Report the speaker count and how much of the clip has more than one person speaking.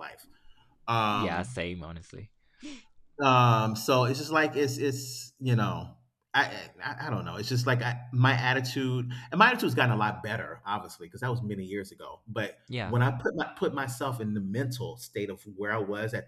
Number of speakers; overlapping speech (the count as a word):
two, about 2%